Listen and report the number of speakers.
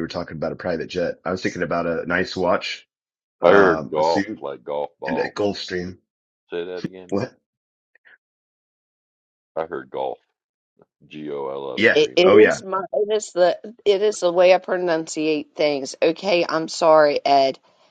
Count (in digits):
3